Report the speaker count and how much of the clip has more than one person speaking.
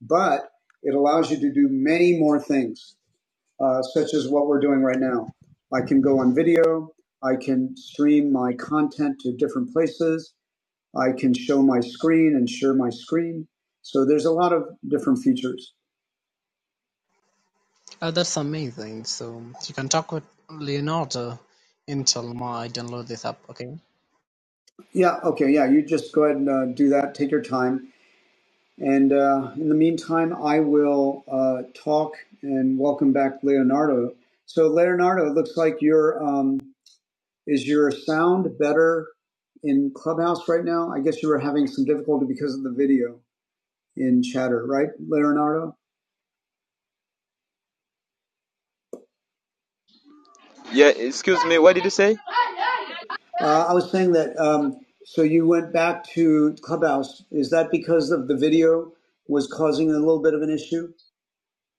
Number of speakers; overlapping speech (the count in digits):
3, no overlap